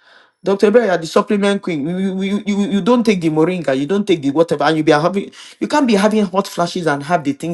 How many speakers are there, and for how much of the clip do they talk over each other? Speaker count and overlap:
1, no overlap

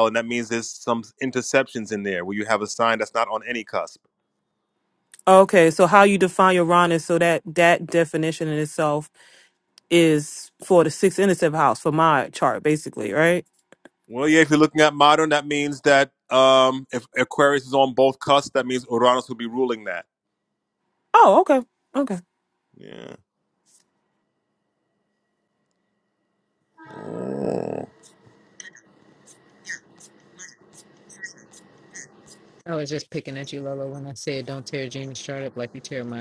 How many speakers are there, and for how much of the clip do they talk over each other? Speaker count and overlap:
3, no overlap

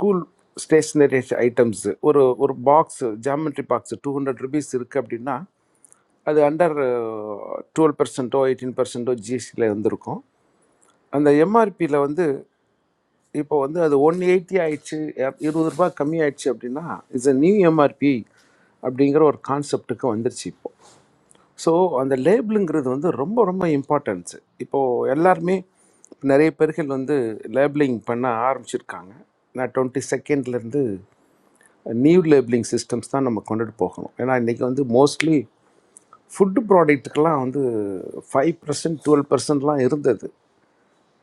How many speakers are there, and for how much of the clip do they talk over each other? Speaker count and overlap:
1, no overlap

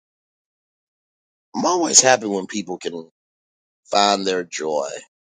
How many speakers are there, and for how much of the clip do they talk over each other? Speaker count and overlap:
1, no overlap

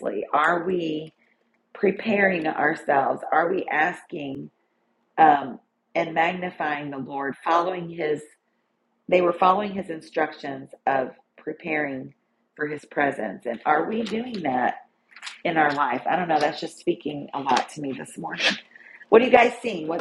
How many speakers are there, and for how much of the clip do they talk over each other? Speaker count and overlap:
1, no overlap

